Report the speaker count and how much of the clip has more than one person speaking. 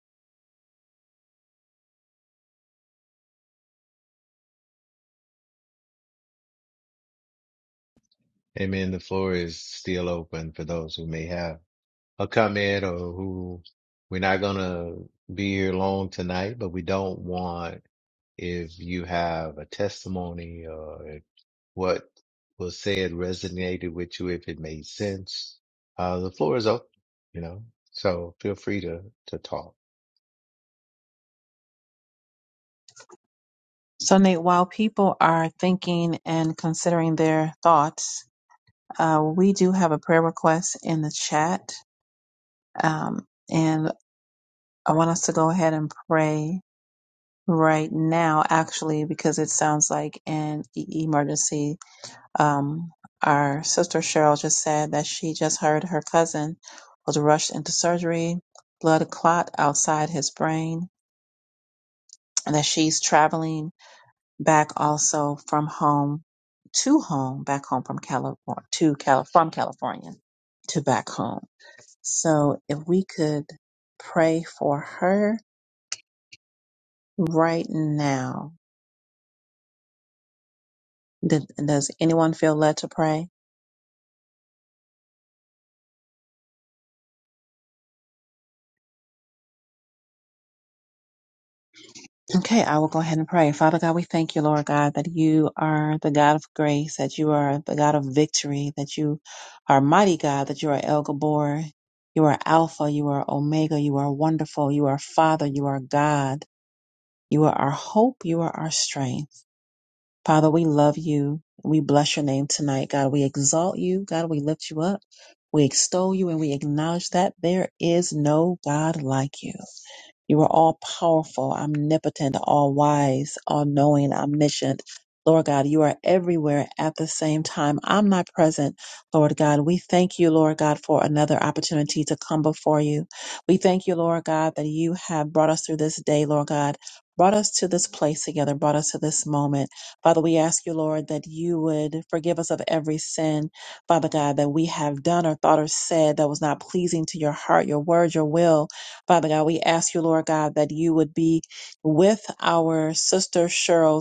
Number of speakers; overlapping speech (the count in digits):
2, no overlap